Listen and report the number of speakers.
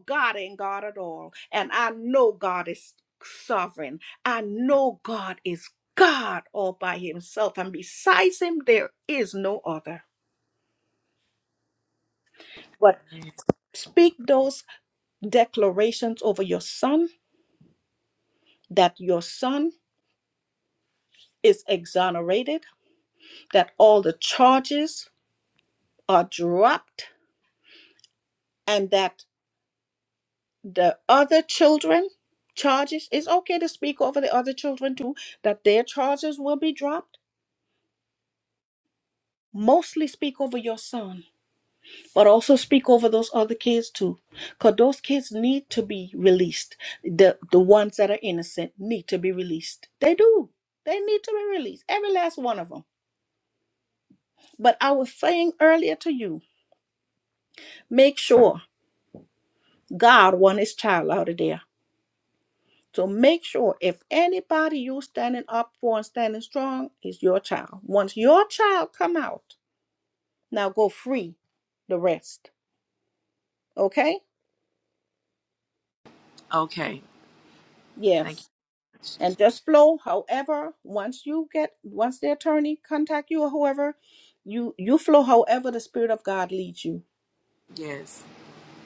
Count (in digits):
2